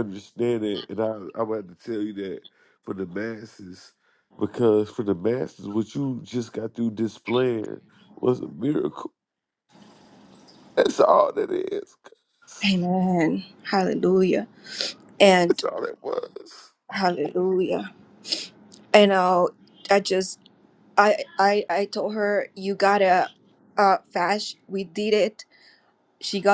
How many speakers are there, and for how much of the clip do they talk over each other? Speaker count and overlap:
two, about 1%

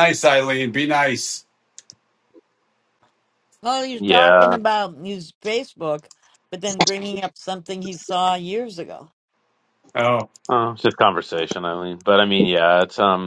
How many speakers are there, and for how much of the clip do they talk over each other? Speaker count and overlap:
three, about 5%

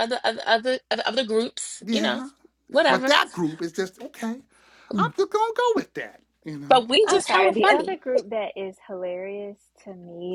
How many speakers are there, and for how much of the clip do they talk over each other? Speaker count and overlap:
three, about 16%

